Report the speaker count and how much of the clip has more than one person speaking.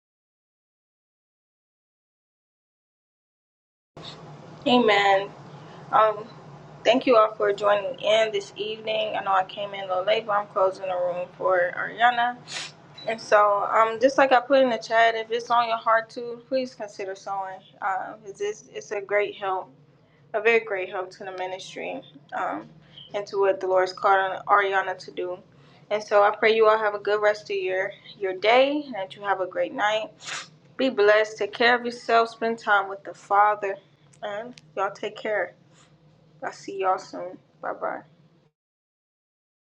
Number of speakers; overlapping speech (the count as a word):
one, no overlap